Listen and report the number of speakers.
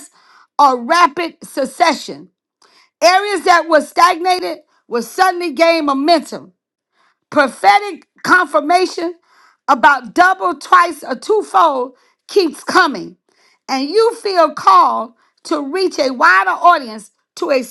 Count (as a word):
one